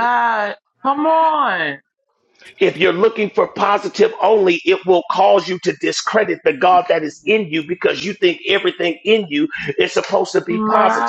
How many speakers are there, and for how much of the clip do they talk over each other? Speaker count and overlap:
two, about 6%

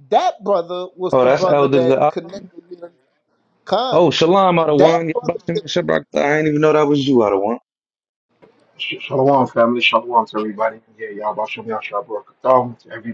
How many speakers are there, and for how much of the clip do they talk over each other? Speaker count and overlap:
three, about 11%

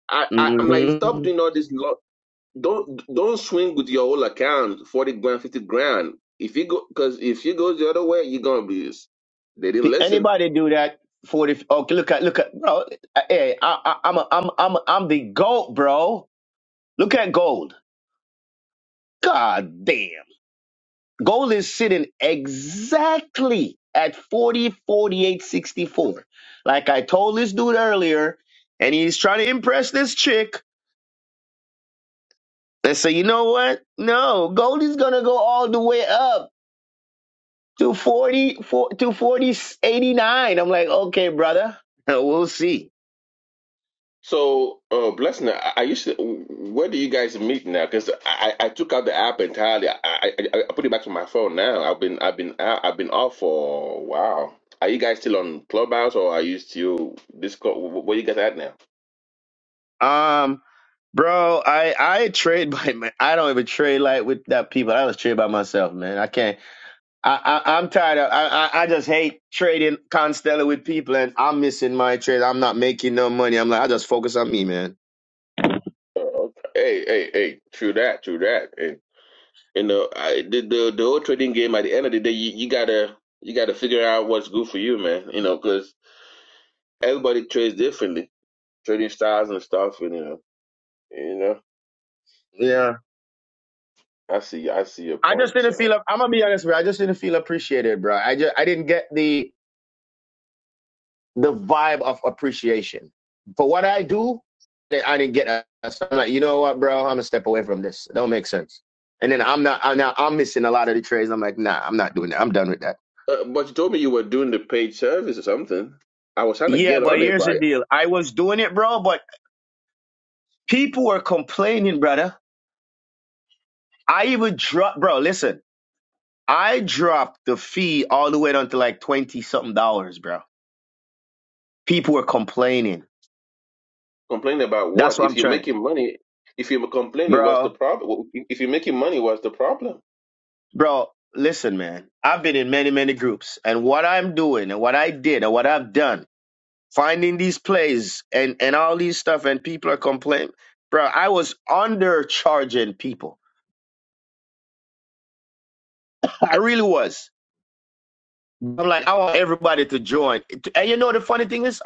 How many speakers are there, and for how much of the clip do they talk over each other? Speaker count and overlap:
two, about 2%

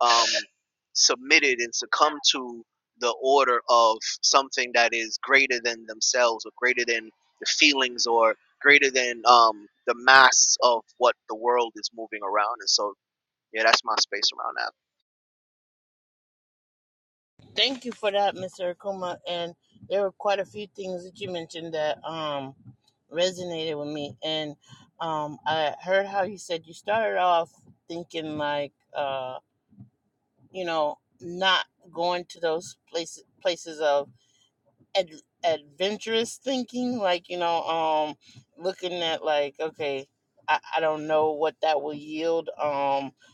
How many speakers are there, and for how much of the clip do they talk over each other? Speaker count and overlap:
two, no overlap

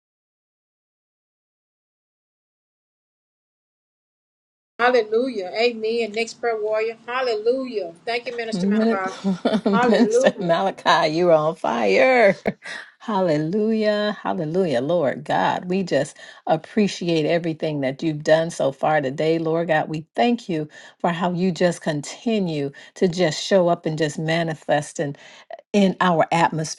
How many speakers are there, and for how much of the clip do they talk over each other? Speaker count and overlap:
two, about 5%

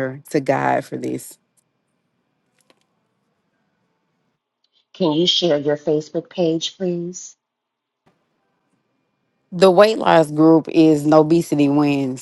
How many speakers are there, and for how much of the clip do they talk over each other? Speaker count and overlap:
two, no overlap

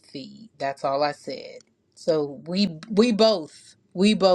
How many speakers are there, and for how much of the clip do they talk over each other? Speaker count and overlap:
one, no overlap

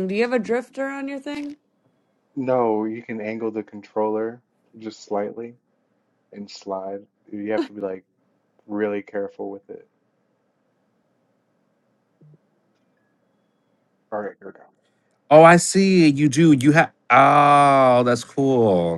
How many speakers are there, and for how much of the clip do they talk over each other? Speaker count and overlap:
three, no overlap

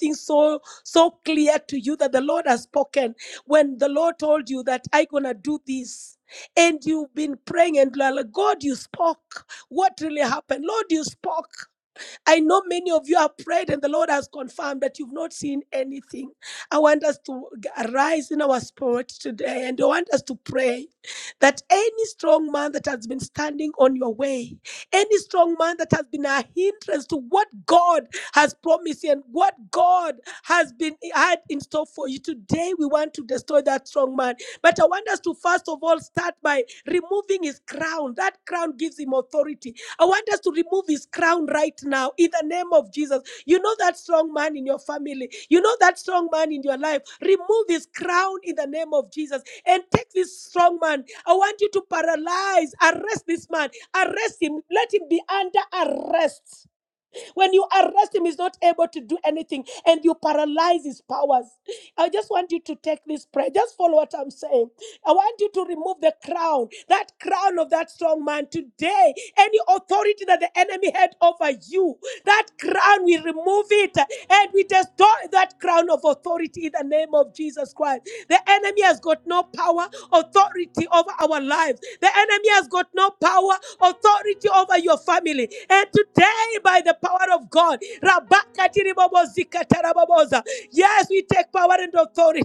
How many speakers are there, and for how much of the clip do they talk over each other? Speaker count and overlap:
one, no overlap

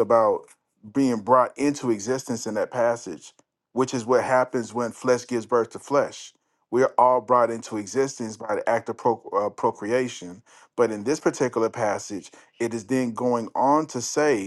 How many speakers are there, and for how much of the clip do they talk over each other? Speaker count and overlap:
one, no overlap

